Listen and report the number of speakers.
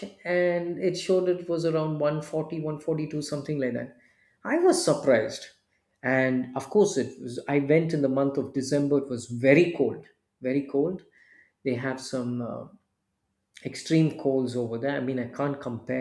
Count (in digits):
1